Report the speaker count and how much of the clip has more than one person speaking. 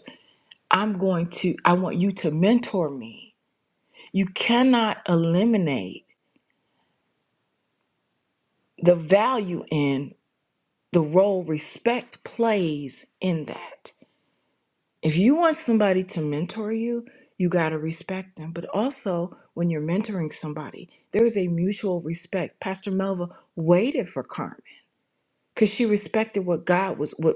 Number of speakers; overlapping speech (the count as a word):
one, no overlap